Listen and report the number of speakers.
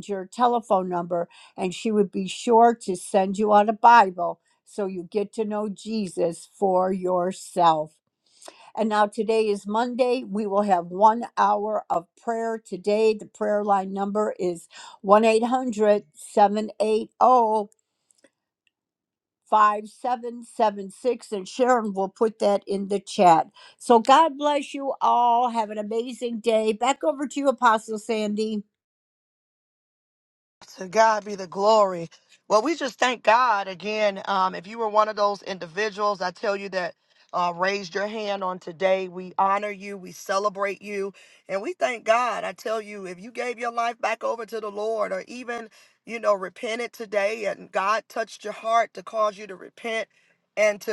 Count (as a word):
two